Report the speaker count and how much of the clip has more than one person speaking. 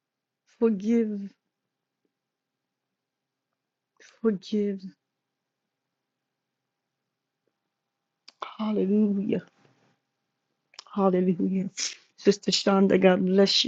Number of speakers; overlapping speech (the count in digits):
1, no overlap